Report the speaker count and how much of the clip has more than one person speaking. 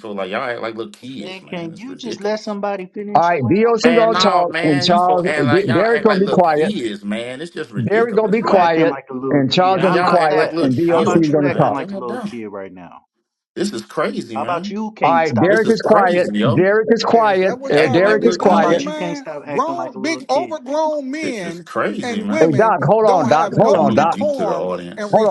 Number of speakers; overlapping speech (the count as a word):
four, about 71%